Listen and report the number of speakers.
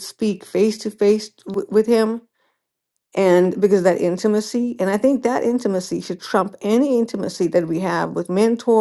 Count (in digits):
1